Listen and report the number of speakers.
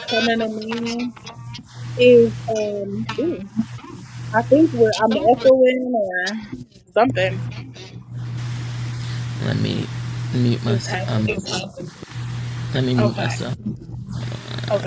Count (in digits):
2